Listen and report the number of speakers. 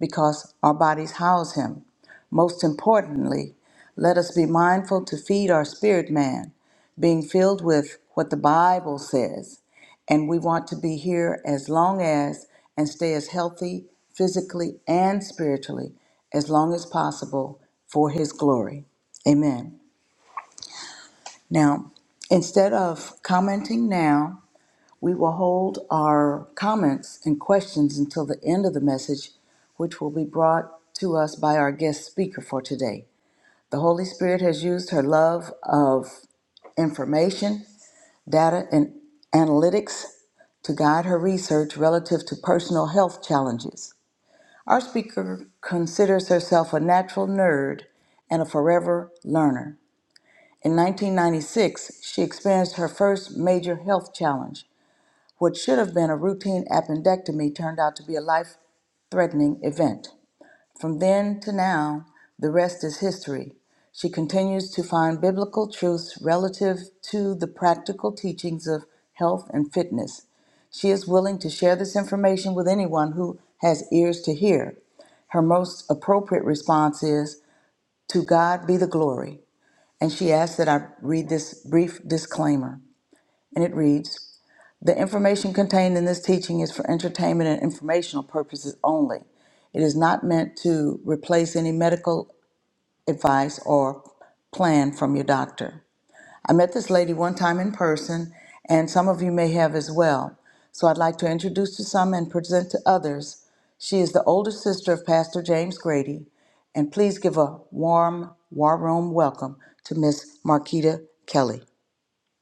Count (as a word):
one